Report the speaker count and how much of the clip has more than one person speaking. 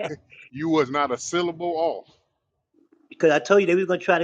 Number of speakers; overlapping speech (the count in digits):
2, no overlap